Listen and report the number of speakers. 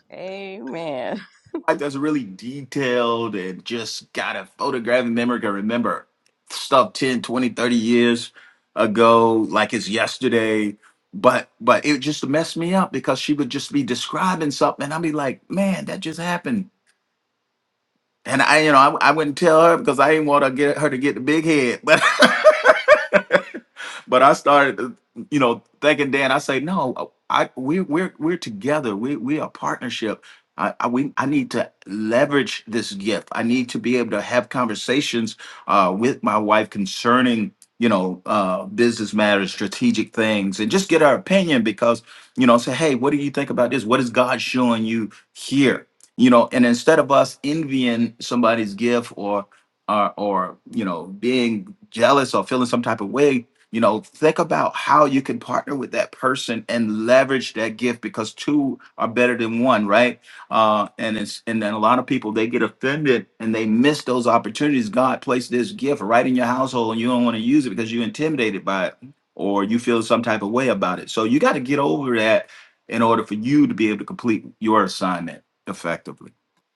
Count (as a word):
two